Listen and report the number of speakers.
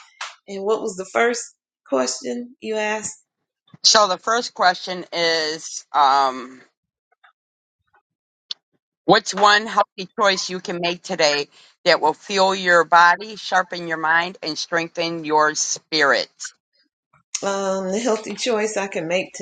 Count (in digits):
2